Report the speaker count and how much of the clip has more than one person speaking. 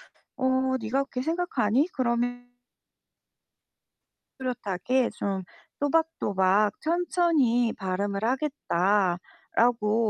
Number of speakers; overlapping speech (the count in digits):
1, no overlap